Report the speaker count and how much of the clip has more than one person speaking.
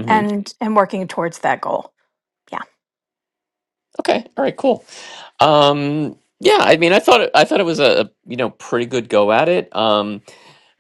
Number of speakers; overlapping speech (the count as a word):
two, about 2%